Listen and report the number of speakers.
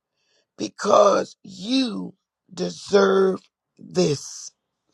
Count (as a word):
one